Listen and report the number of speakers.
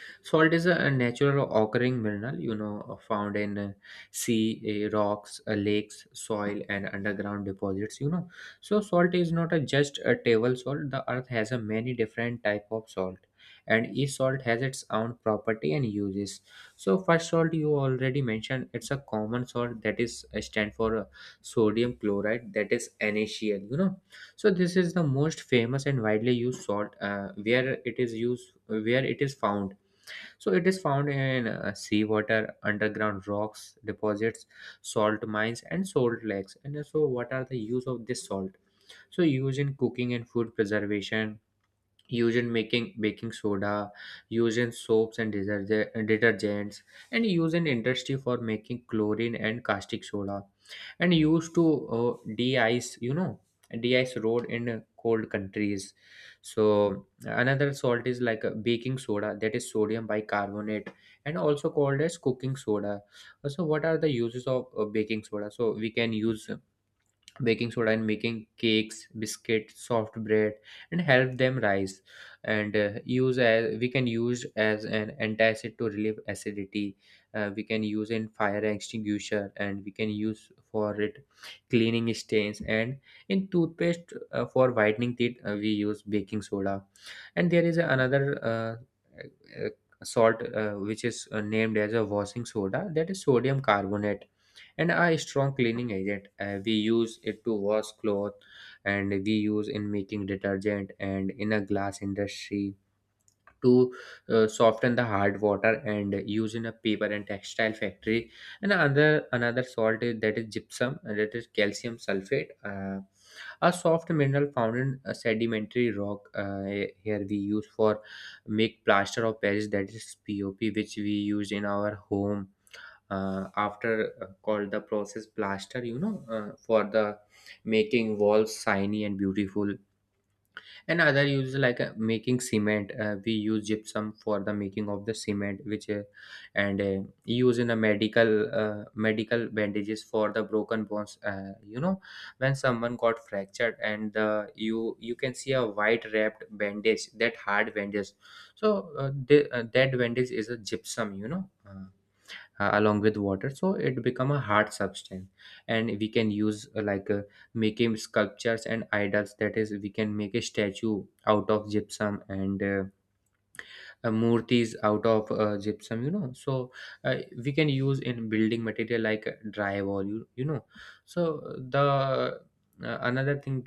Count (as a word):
one